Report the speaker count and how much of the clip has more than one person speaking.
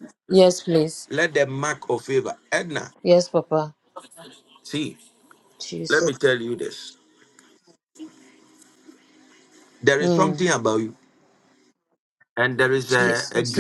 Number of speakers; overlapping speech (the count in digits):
2, about 10%